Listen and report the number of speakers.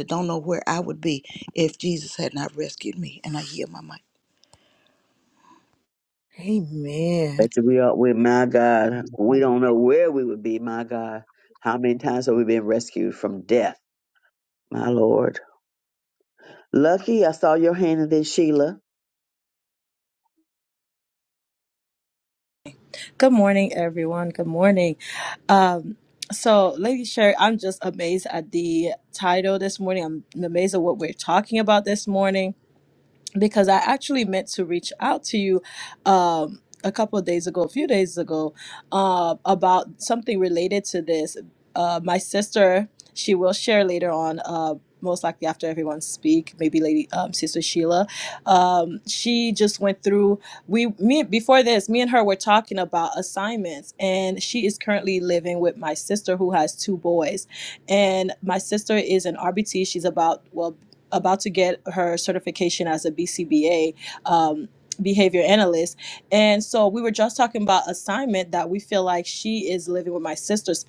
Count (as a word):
four